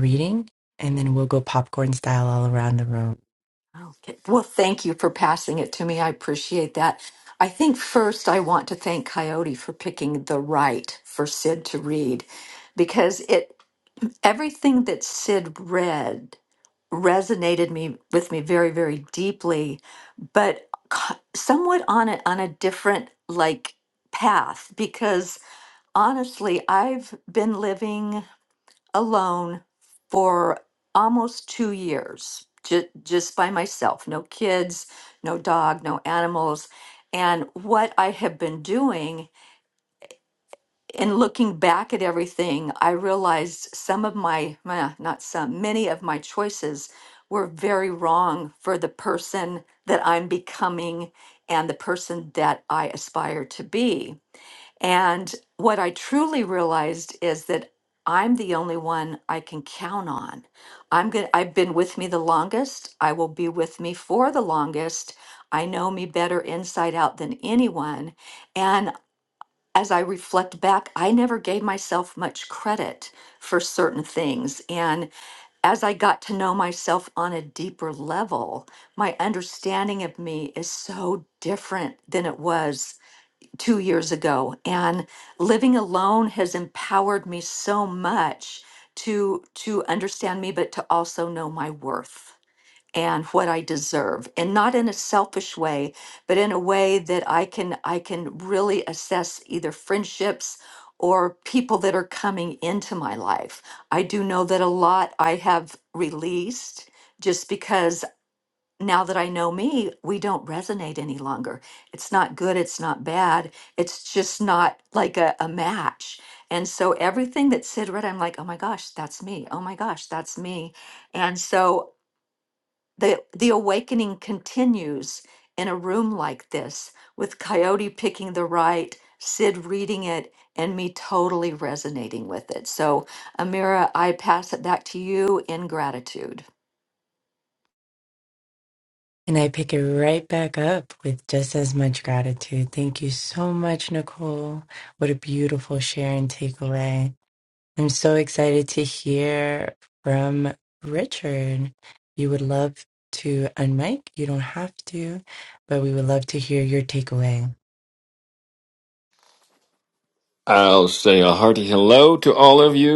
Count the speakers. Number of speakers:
three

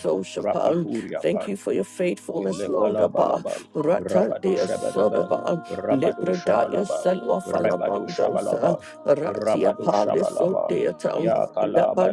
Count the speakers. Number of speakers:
two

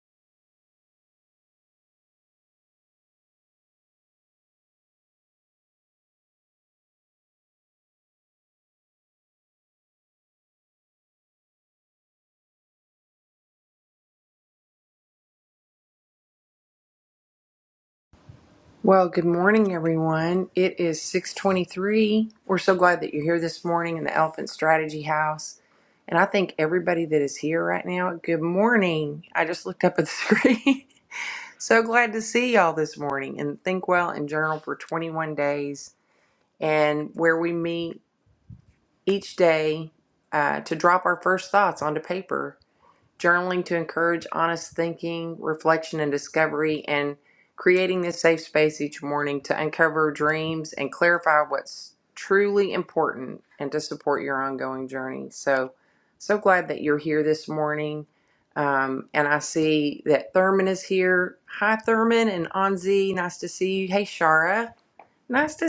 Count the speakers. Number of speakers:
one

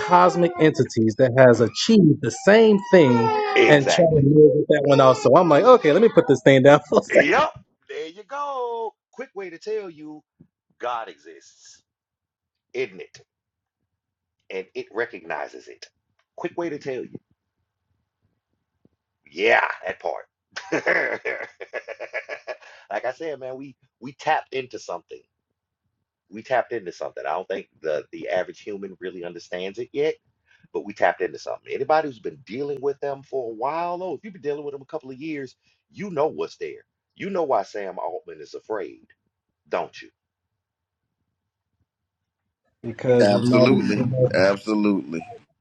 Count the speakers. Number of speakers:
three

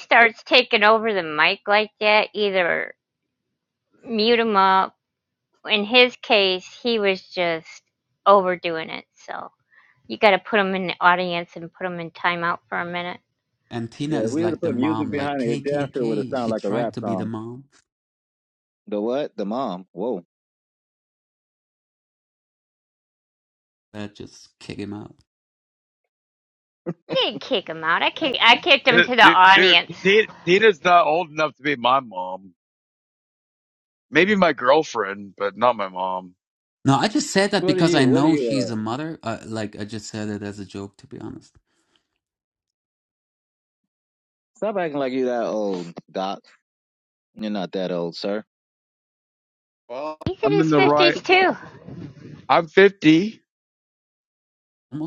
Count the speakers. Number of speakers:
four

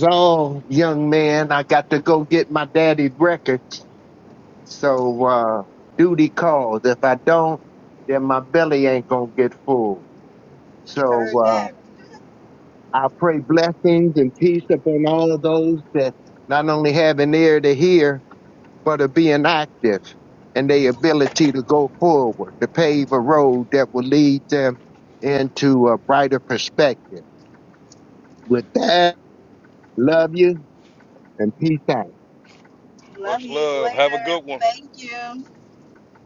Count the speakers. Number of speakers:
three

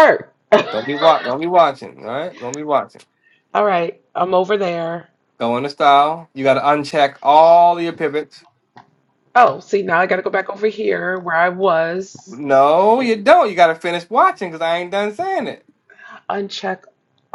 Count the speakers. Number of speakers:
two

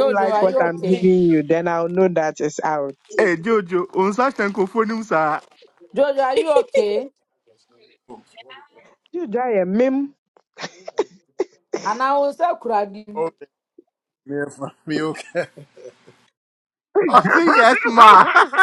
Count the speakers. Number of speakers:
four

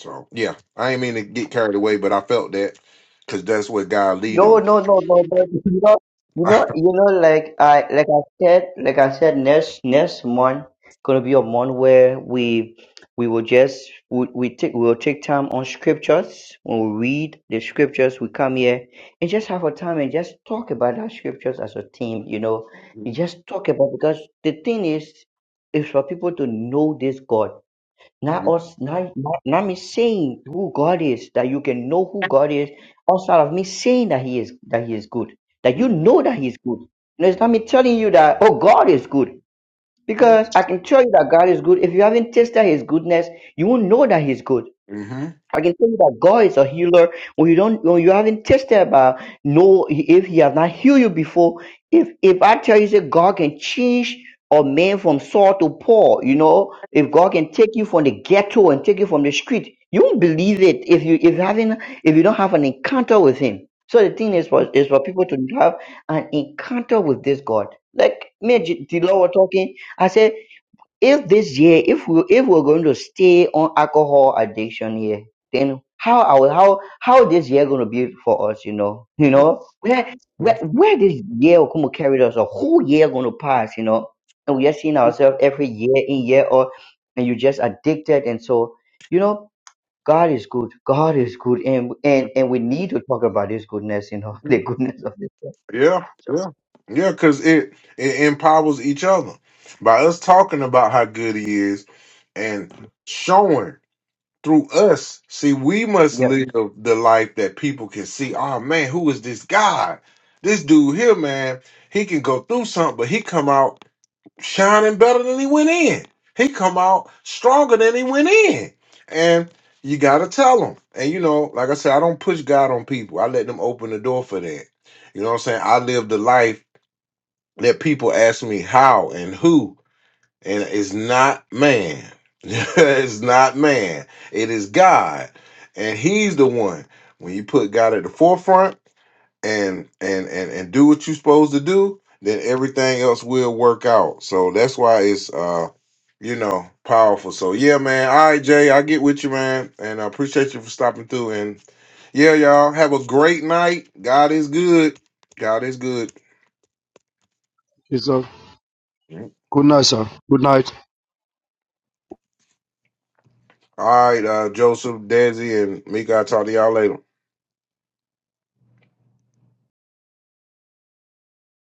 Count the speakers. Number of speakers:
three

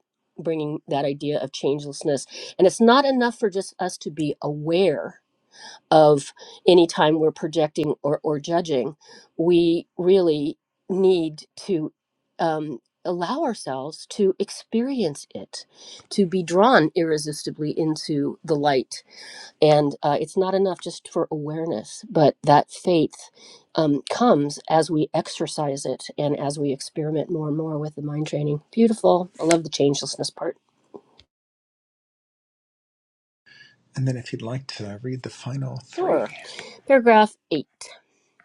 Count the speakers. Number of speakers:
two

